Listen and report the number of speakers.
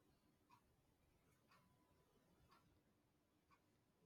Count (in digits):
0